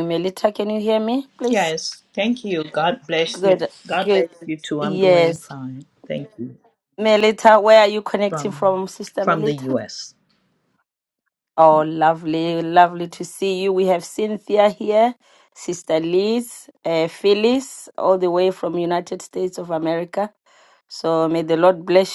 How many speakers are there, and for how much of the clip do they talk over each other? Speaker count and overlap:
two, about 9%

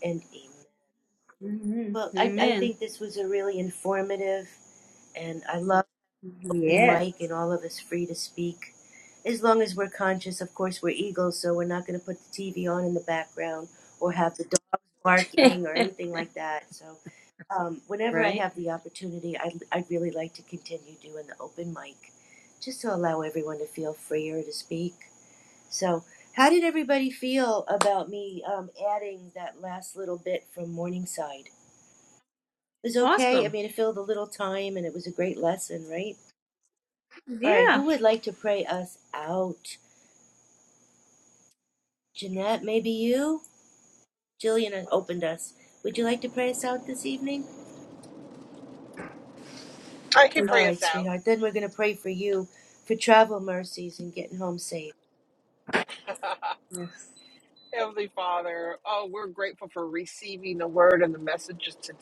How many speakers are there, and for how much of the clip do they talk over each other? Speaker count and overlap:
three, about 5%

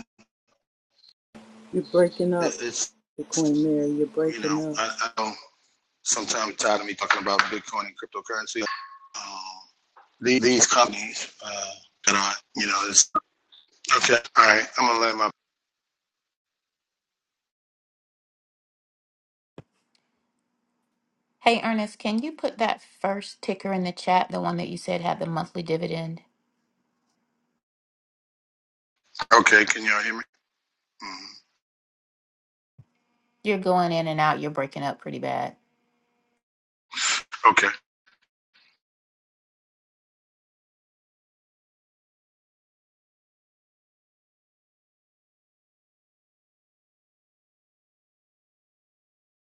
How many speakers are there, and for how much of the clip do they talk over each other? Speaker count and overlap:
three, about 2%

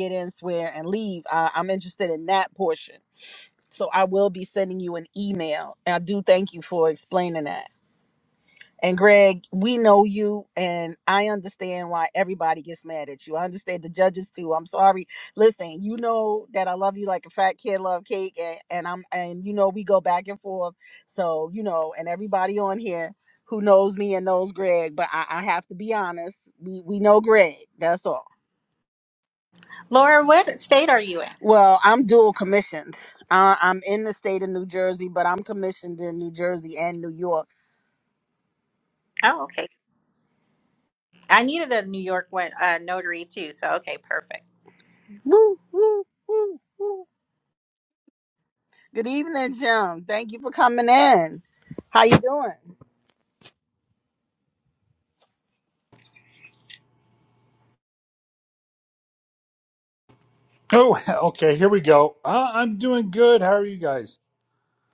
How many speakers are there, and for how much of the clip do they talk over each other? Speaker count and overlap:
three, no overlap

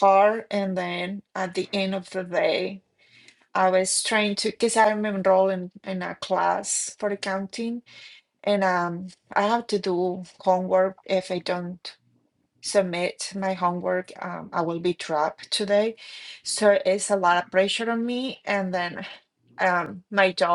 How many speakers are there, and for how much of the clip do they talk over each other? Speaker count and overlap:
one, no overlap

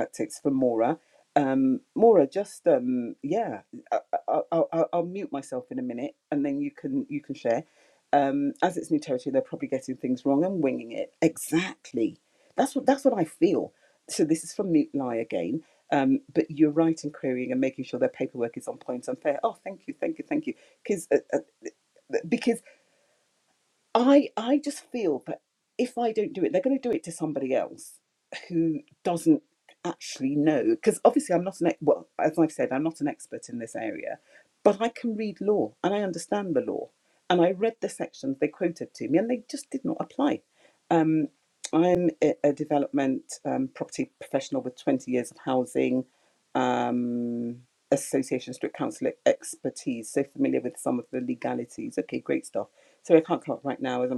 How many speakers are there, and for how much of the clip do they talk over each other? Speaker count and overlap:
one, no overlap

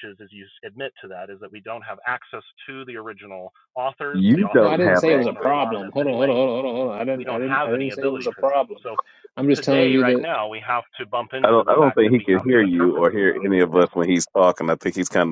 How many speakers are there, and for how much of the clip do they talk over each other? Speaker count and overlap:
three, about 45%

